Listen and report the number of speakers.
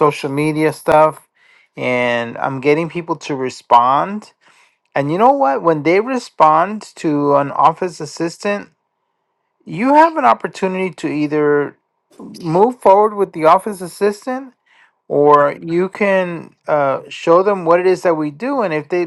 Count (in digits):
1